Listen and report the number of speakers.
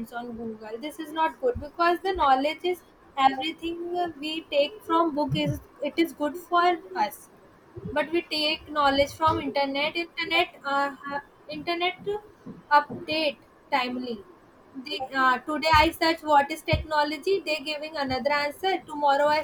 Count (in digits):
1